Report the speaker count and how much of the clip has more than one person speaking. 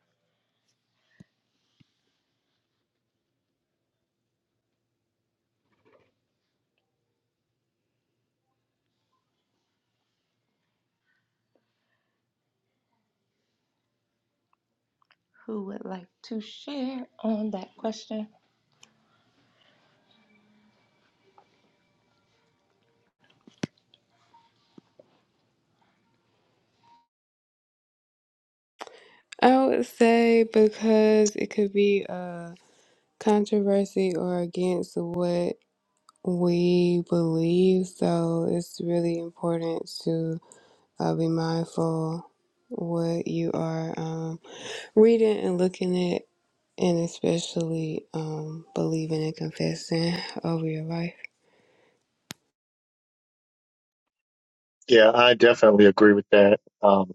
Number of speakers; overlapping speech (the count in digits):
3, no overlap